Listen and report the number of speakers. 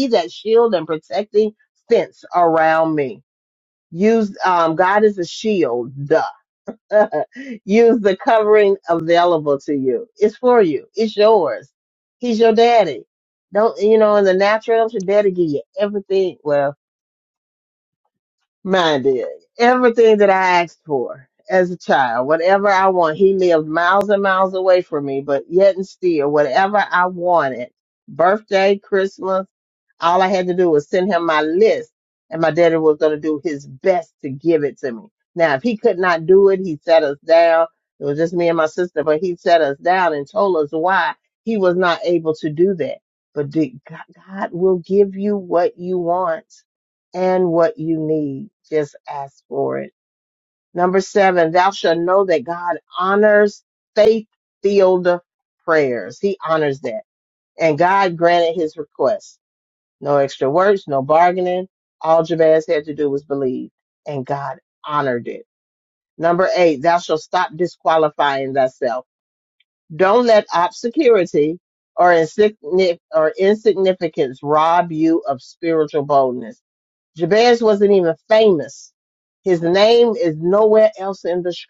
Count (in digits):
1